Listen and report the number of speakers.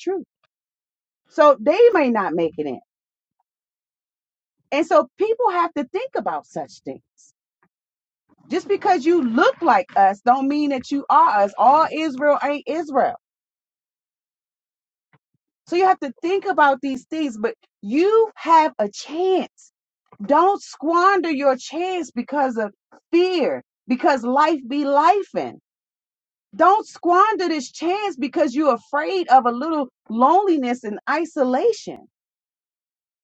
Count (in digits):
1